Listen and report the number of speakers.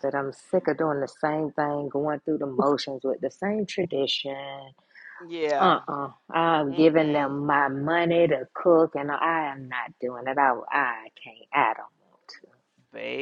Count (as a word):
two